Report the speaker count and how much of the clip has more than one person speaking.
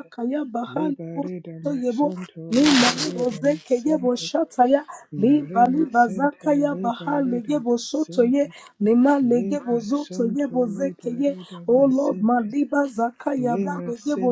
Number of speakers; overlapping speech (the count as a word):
two, about 56%